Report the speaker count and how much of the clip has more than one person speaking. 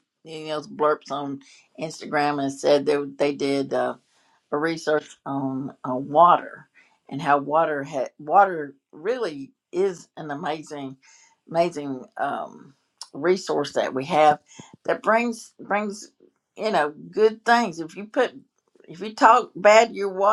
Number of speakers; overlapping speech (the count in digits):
1, no overlap